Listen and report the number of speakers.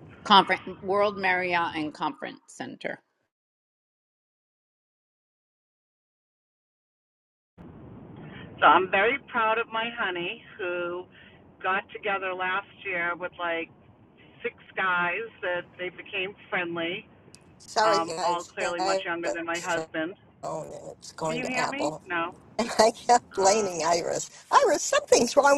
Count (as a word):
three